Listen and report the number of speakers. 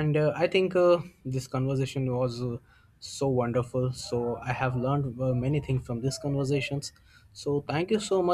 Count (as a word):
one